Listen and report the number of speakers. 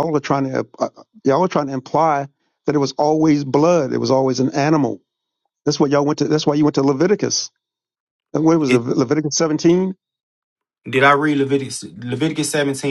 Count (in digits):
2